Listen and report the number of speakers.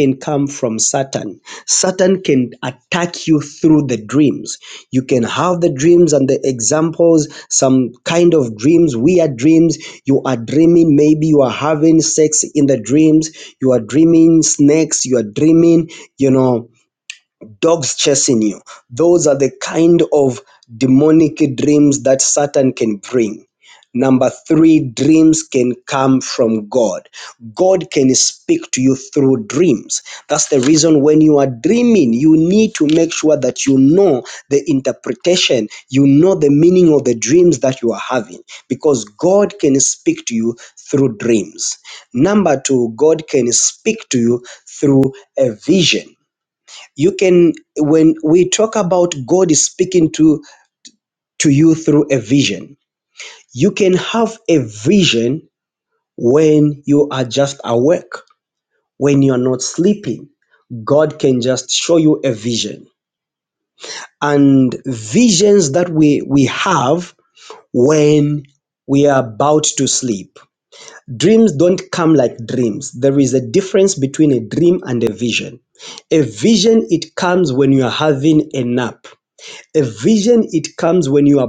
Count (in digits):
1